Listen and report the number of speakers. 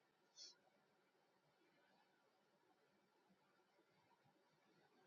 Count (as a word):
zero